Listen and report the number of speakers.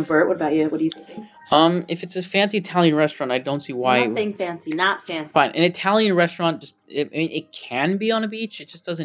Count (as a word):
two